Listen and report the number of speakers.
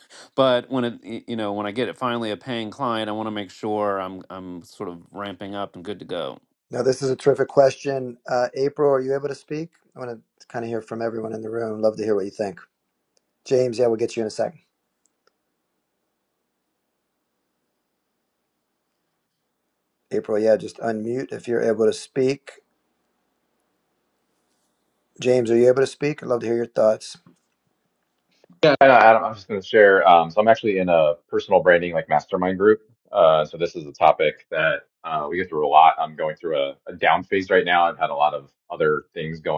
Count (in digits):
3